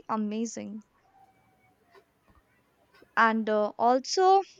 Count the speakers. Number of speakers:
1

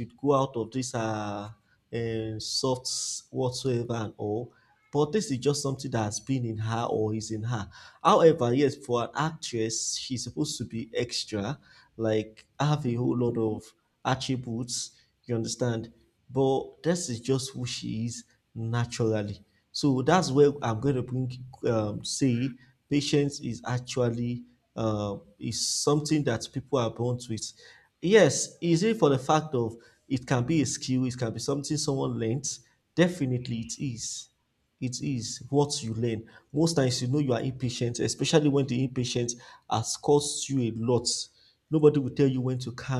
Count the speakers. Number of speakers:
1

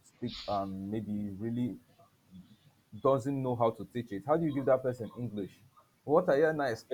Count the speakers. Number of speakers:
1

